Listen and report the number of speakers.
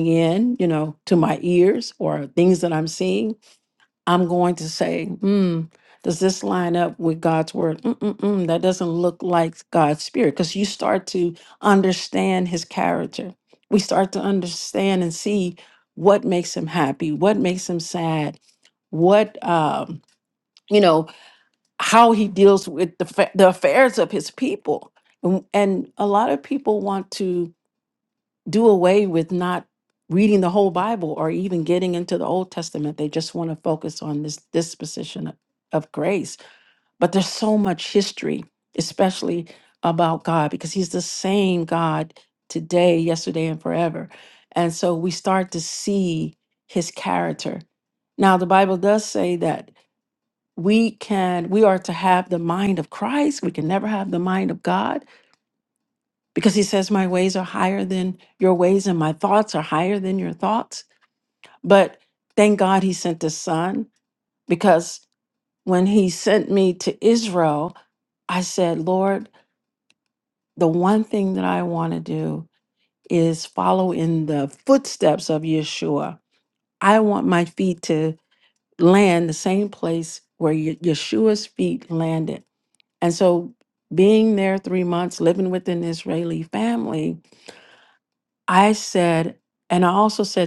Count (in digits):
1